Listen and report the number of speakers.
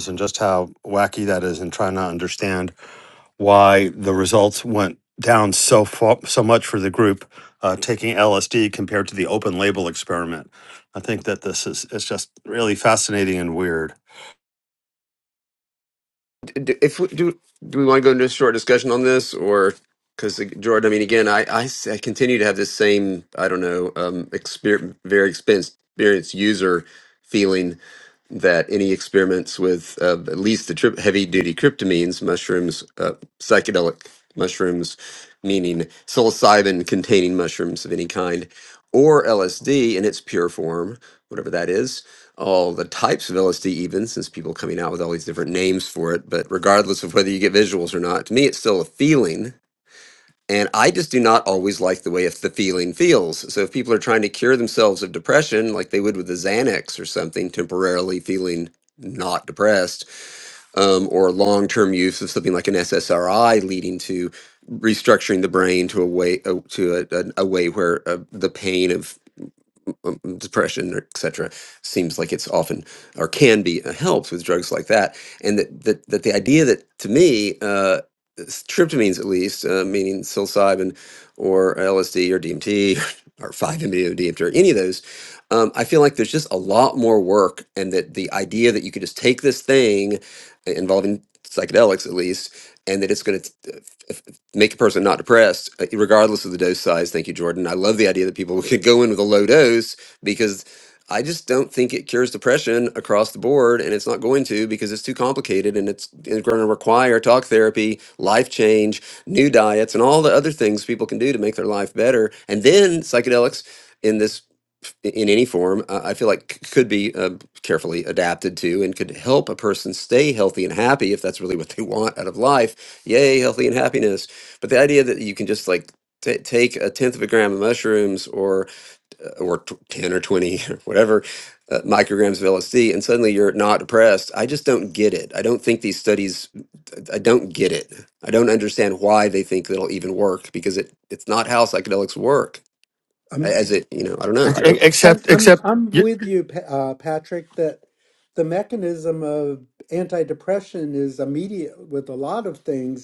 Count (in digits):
3